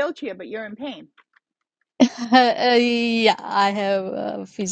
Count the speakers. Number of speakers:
two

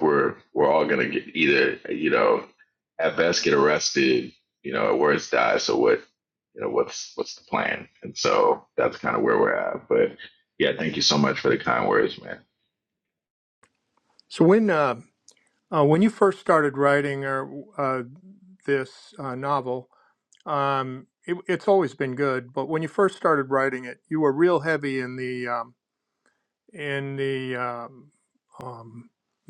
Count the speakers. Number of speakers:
two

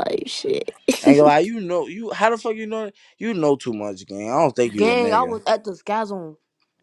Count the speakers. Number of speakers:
three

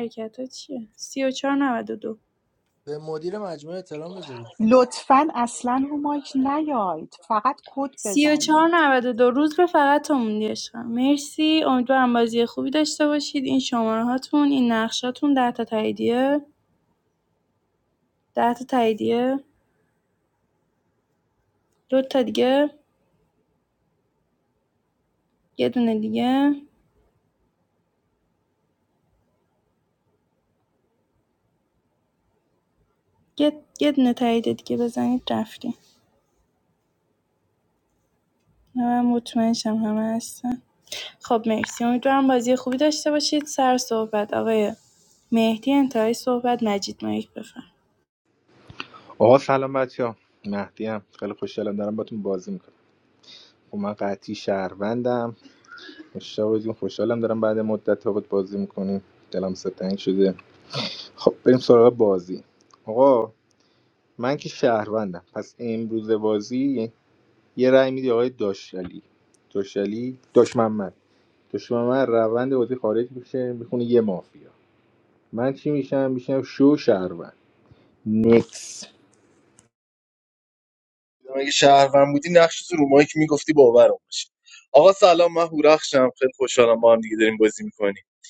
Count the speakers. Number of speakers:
five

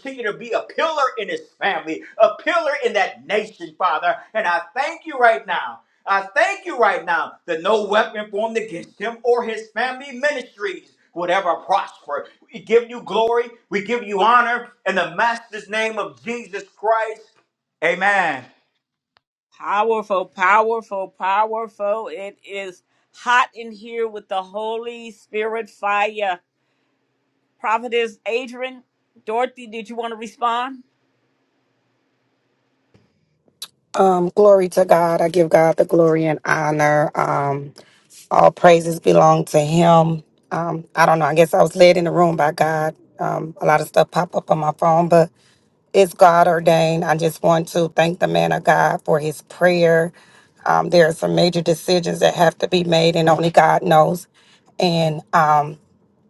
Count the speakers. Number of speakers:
three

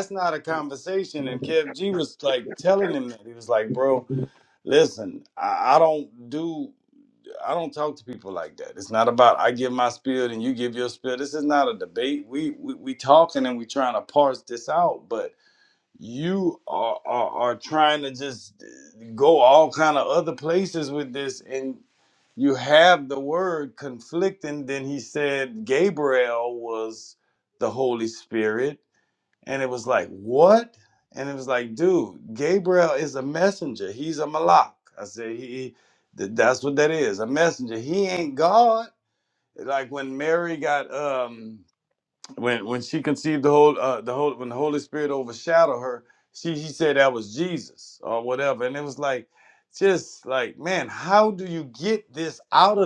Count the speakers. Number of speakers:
one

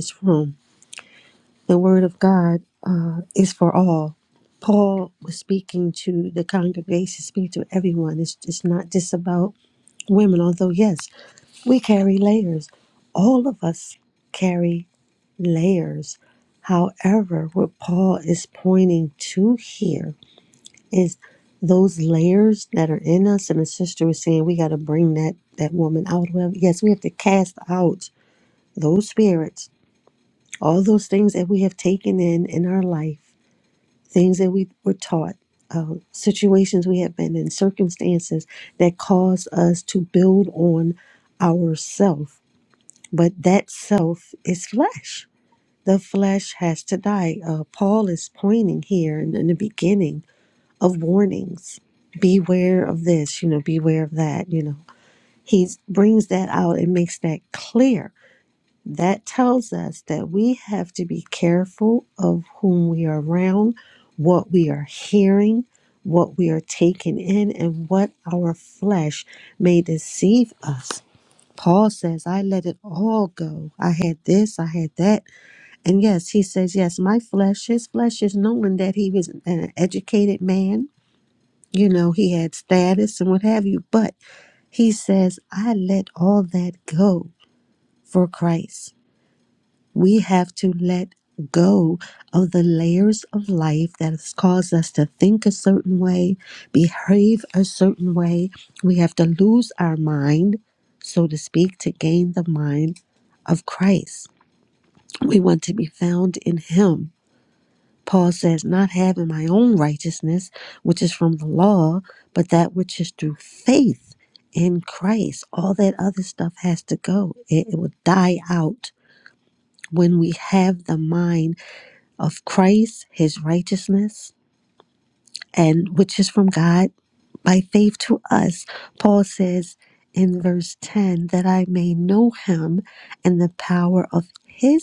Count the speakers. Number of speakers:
one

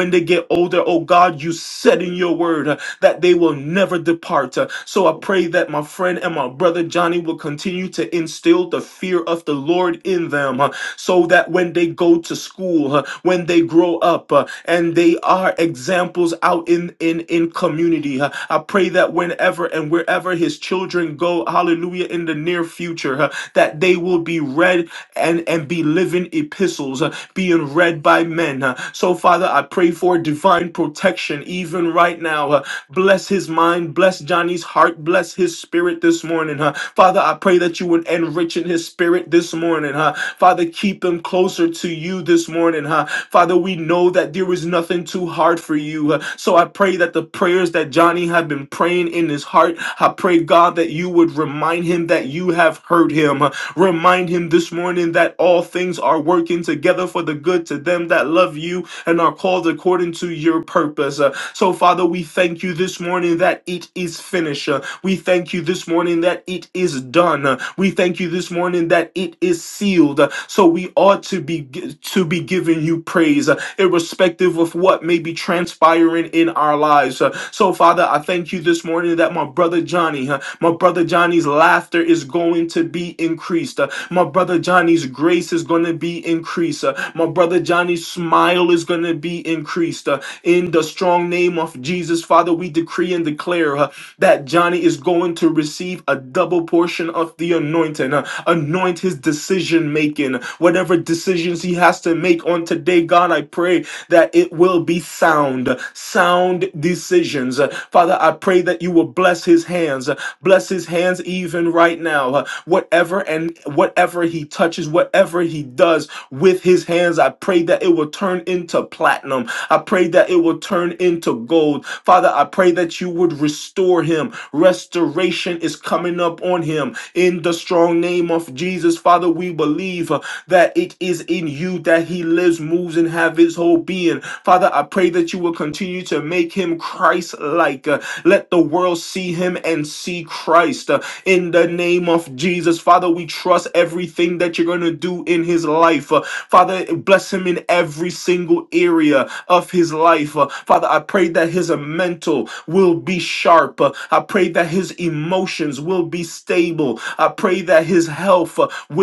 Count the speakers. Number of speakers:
one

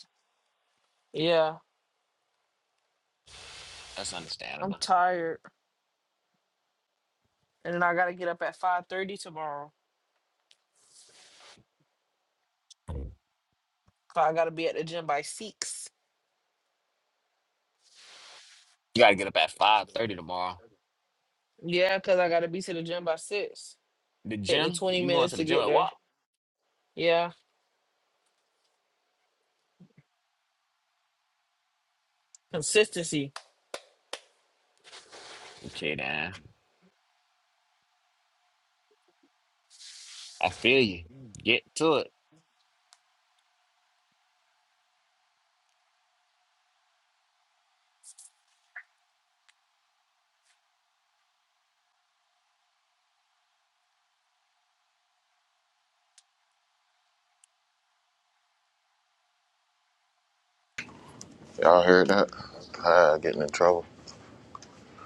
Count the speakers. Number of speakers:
three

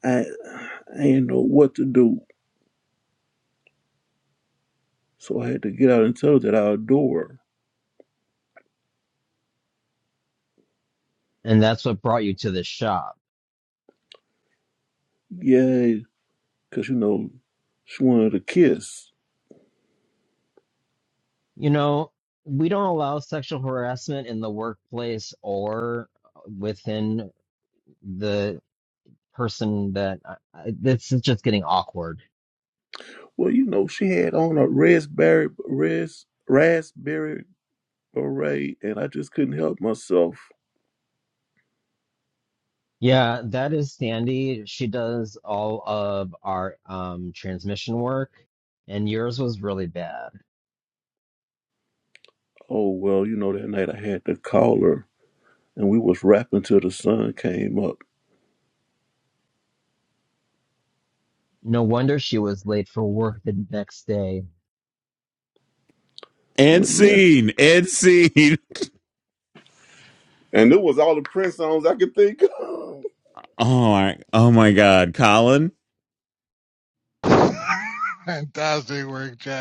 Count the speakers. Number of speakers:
four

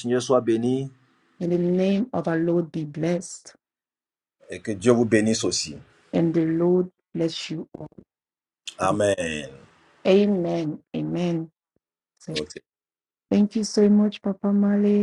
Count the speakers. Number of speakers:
two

